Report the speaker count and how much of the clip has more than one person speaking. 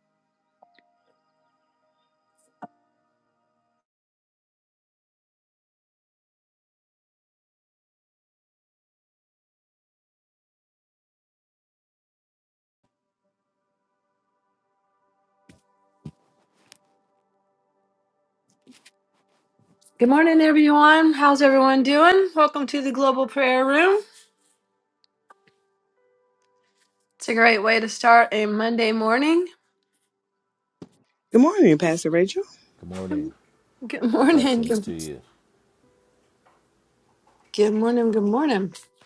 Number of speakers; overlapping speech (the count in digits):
3, about 2%